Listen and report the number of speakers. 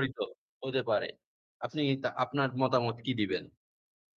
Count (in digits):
1